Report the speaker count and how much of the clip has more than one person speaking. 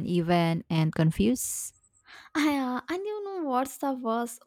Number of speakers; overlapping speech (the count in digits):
2, no overlap